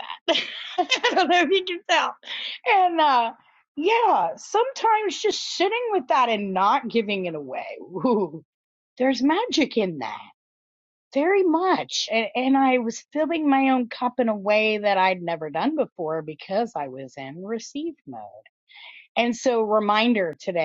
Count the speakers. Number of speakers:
one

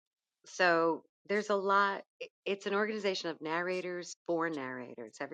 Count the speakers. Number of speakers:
one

